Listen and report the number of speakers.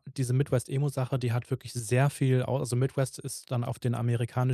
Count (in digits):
1